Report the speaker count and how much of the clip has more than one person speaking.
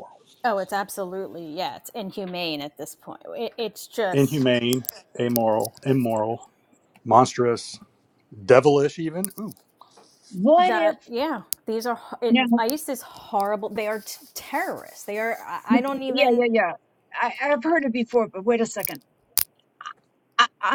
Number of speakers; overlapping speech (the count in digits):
3, about 7%